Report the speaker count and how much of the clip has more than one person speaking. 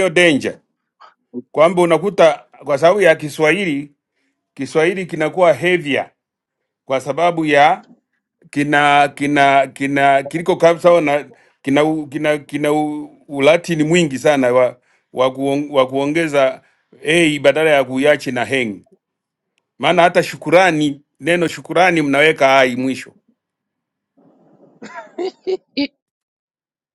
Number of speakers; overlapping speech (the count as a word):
one, no overlap